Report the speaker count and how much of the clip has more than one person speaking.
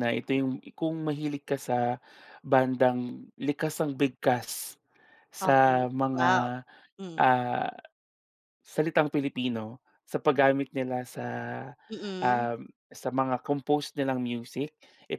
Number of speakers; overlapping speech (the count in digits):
2, about 9%